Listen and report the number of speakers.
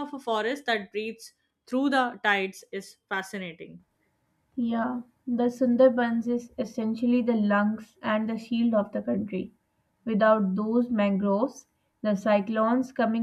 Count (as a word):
two